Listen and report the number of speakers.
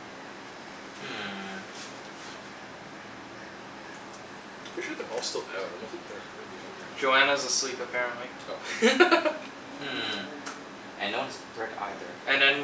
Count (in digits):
3